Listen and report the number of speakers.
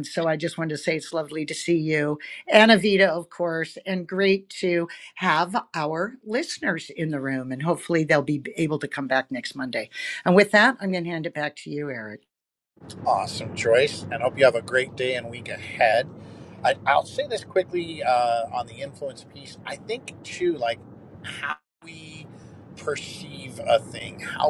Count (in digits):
2